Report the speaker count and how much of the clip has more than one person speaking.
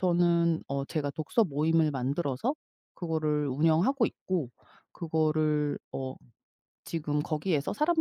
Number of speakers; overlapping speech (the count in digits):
1, no overlap